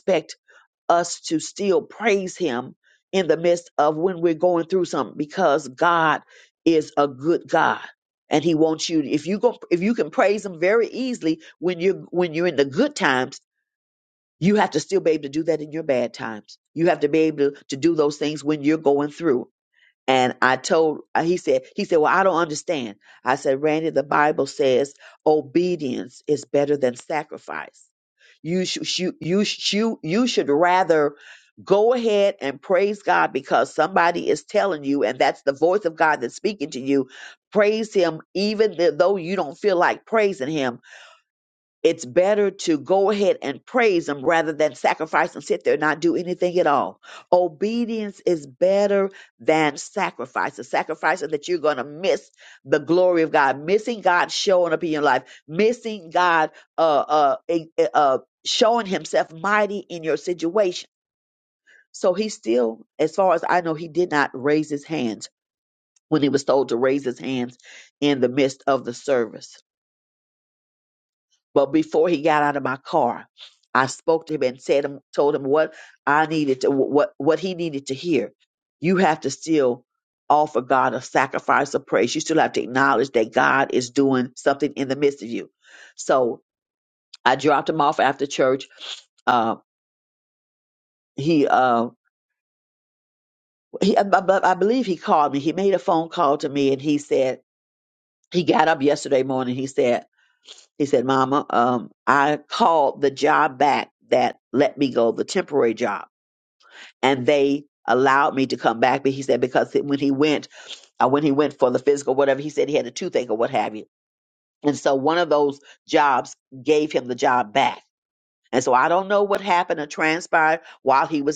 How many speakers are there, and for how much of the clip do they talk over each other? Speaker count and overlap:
1, no overlap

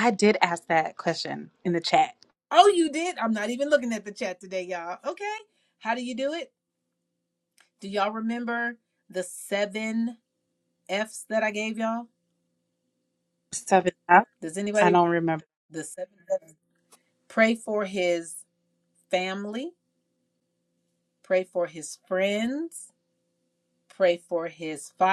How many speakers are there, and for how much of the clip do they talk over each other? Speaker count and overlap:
2, about 1%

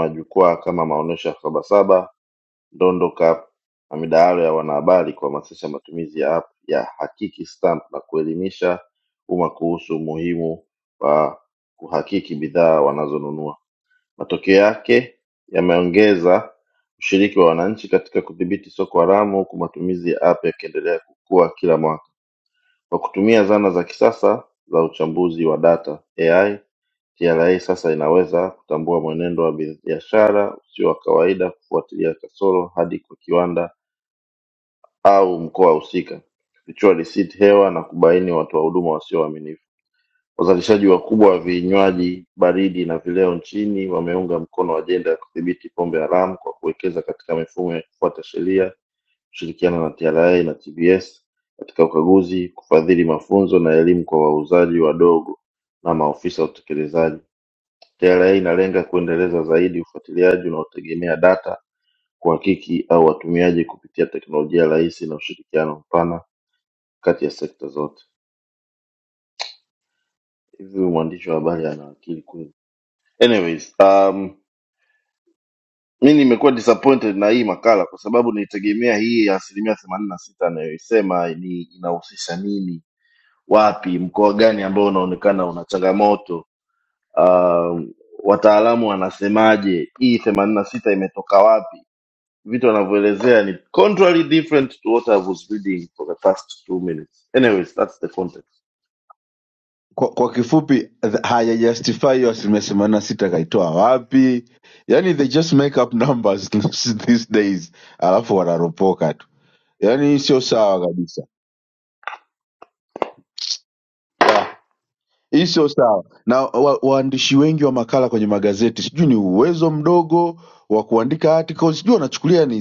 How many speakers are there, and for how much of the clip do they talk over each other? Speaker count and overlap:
2, no overlap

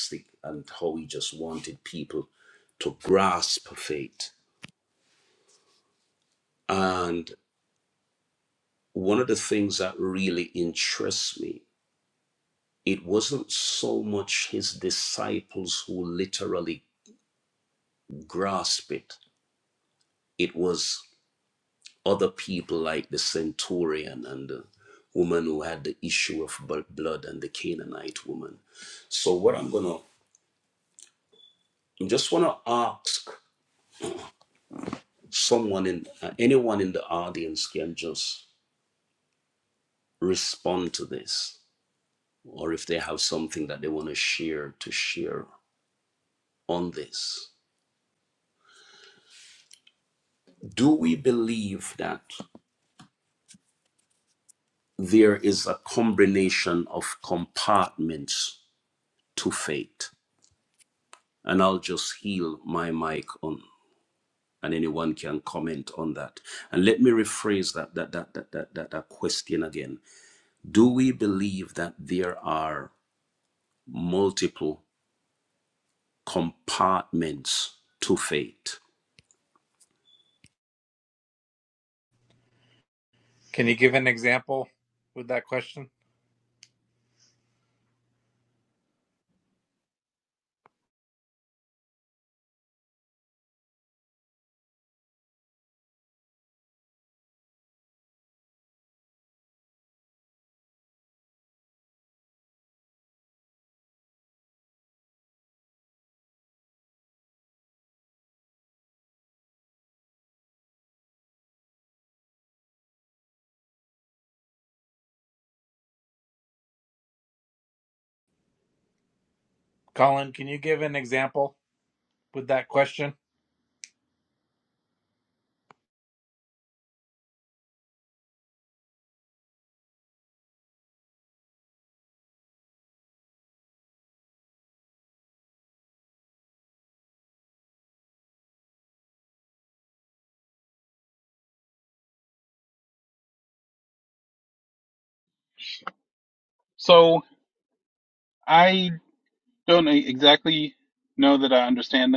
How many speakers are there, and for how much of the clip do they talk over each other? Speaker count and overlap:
3, no overlap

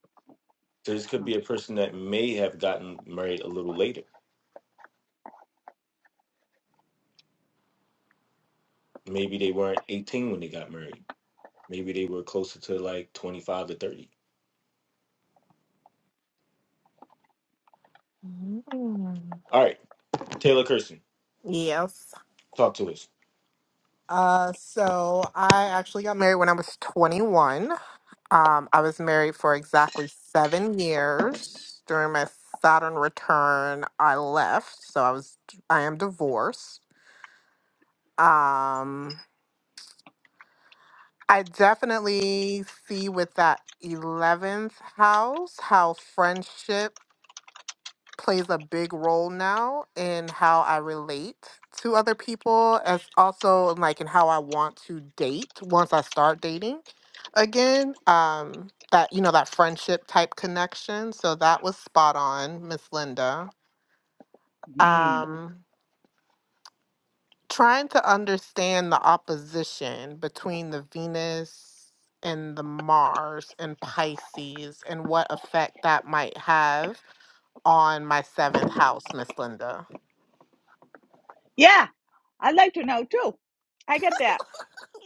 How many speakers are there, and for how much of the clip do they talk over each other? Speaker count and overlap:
3, about 1%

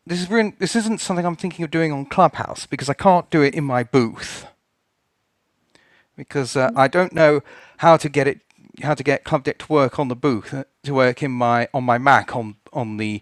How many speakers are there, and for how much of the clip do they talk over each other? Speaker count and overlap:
1, no overlap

